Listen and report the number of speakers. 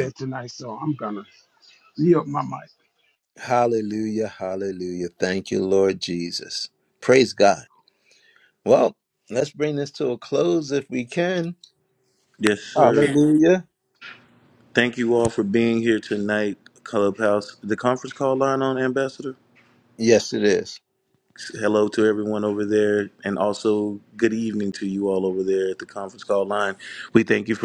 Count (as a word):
three